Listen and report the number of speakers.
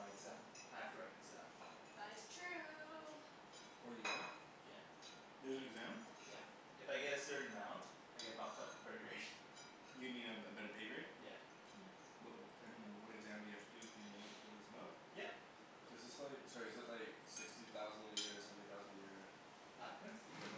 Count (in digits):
4